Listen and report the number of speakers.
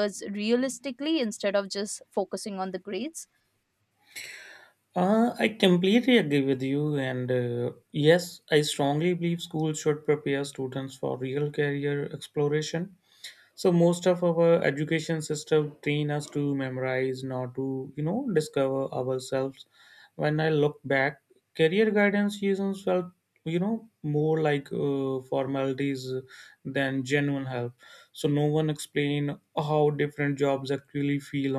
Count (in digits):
2